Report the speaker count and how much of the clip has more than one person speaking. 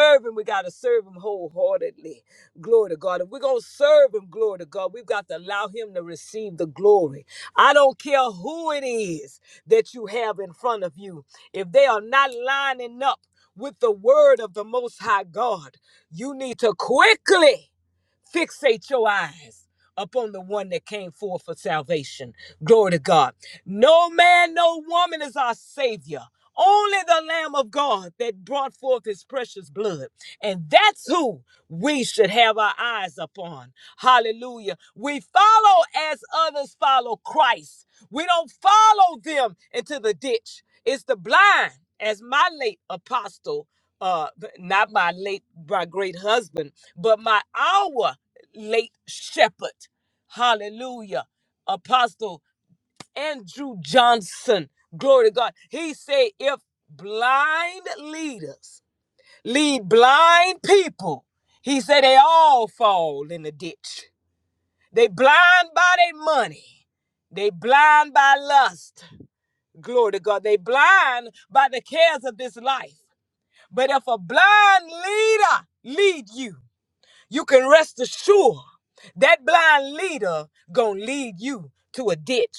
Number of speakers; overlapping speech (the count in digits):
1, no overlap